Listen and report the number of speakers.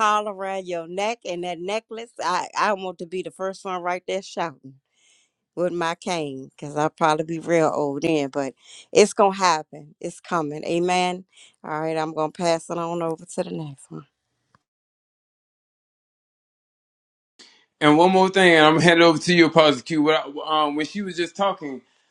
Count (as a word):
two